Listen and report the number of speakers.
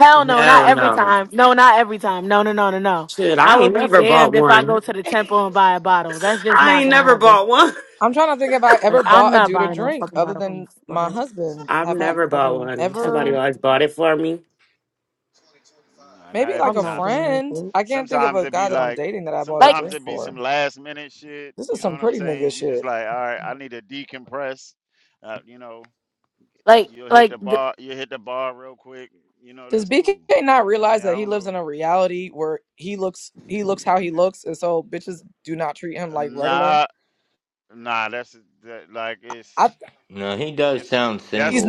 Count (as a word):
five